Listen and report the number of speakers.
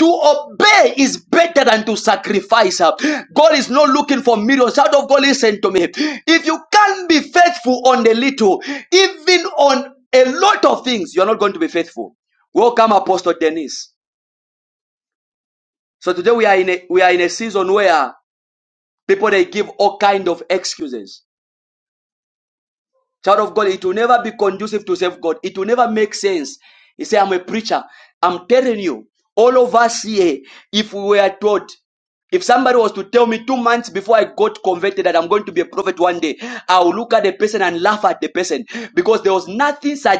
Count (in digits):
1